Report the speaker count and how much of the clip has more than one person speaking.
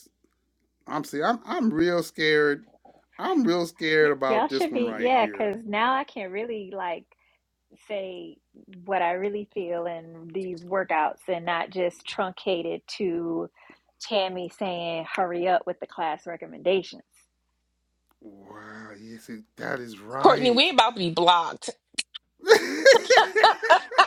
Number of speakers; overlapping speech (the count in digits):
3, about 8%